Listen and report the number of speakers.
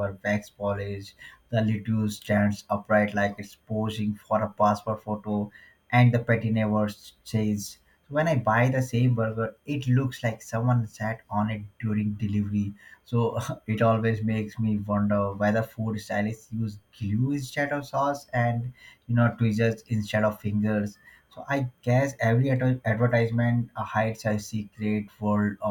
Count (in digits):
1